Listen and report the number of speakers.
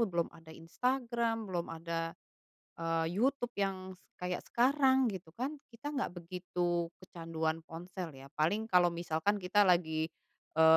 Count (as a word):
one